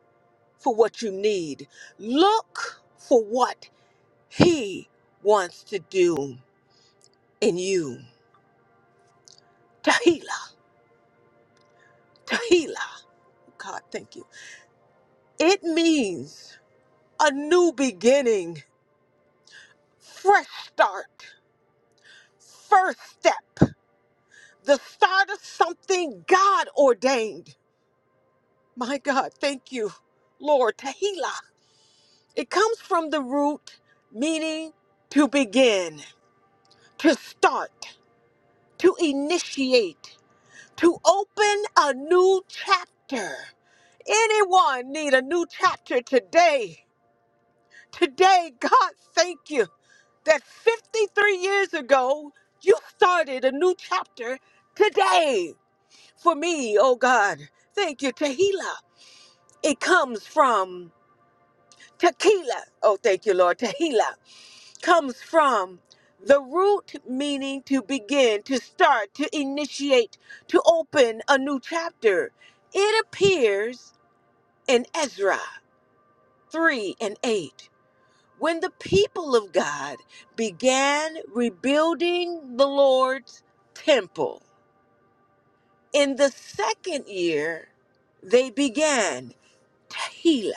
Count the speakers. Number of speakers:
1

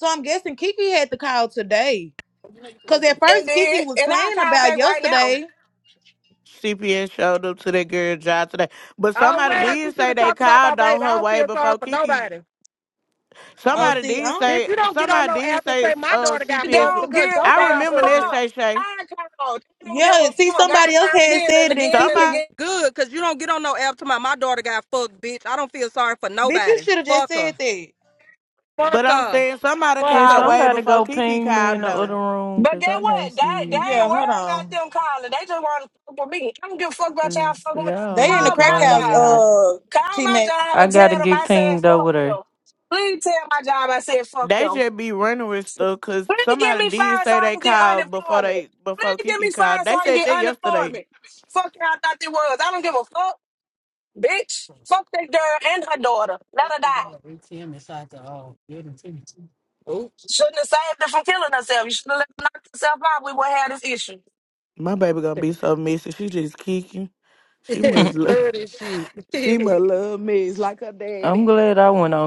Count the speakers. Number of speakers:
5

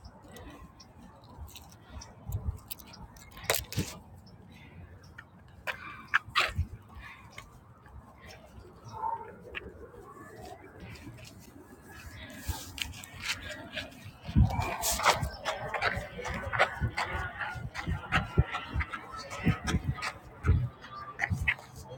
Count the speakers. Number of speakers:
0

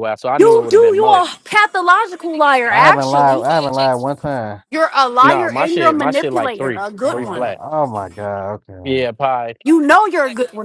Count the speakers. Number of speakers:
3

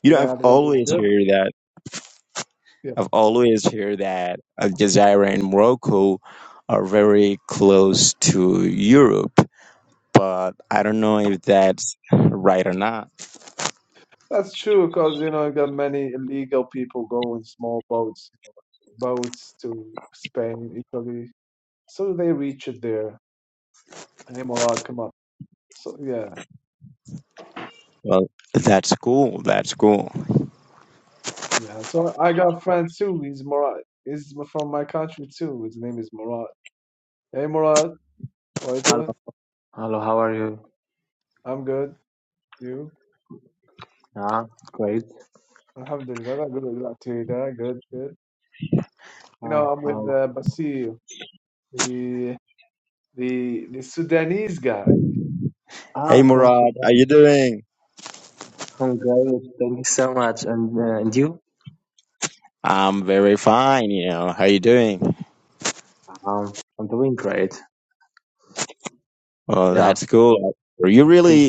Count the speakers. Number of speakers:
3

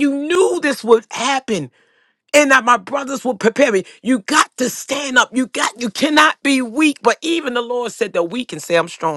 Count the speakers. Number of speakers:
1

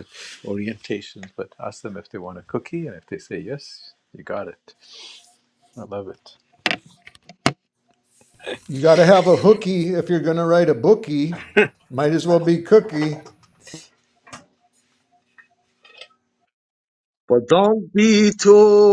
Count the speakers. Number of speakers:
3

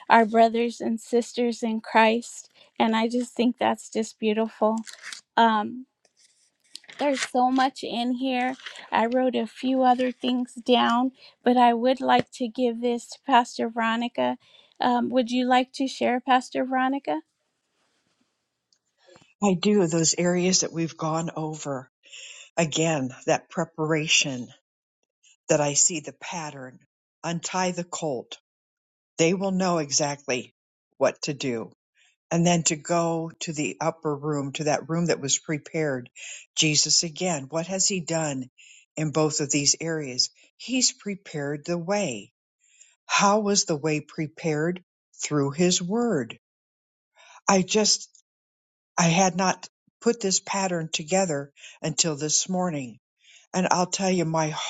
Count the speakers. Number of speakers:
2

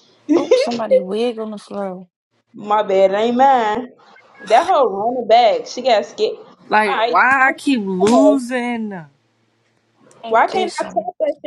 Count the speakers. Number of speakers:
3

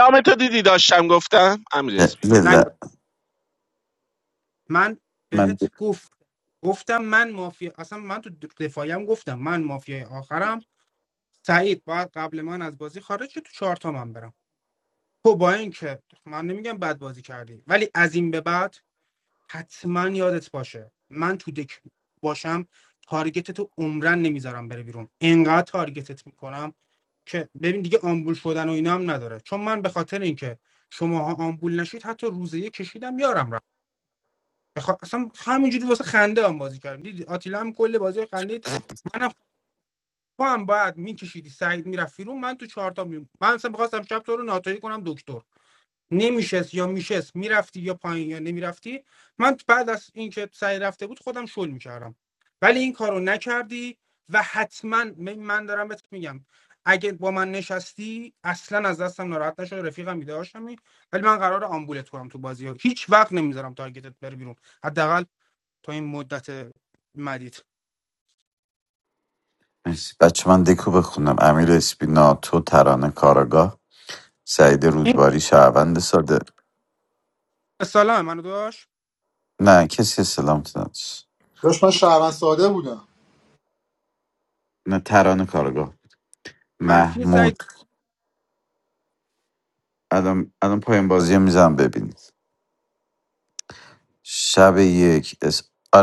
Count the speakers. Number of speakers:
4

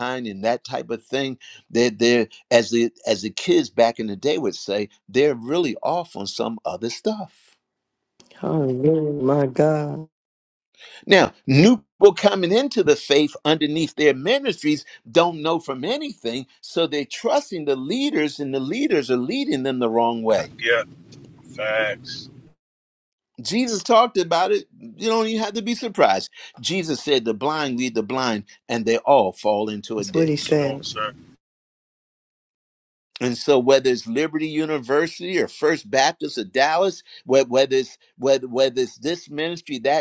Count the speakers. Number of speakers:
3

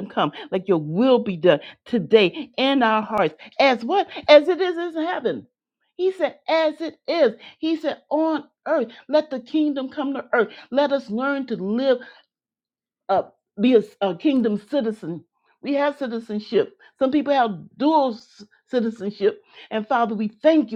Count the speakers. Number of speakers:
1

